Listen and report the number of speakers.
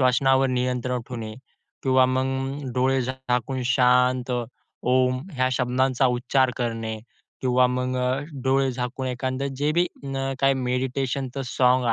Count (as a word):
one